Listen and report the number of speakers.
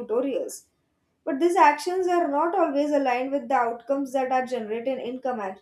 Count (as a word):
one